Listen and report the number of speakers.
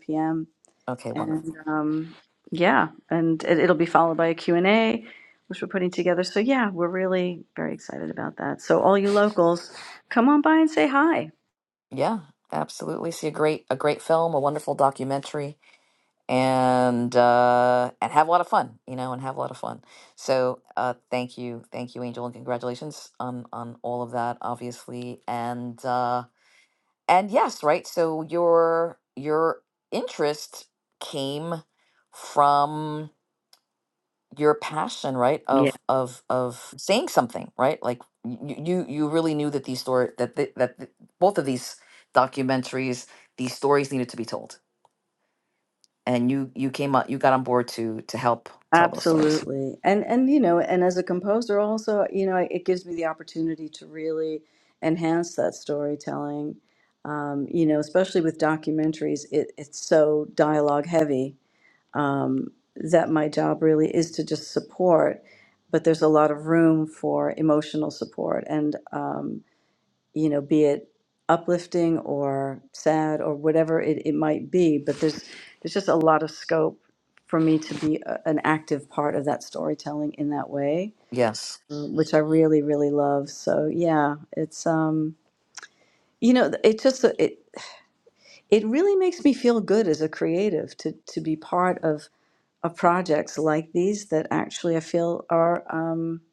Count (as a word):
two